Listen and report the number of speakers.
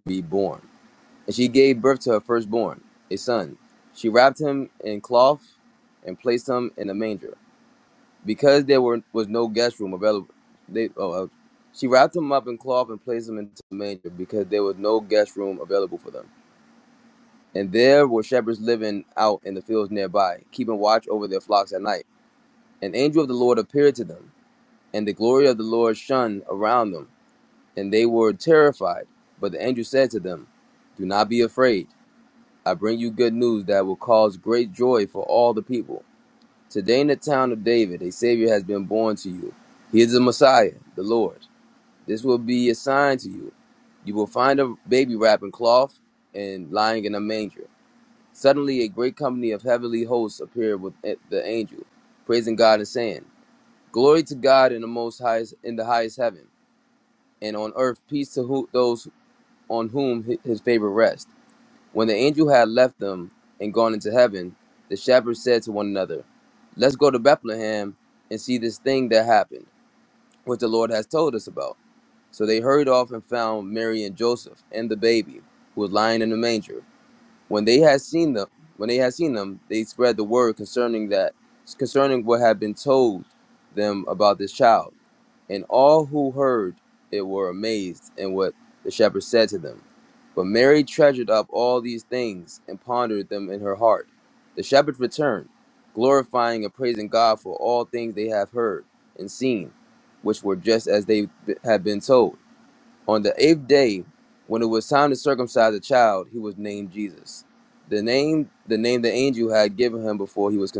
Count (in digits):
1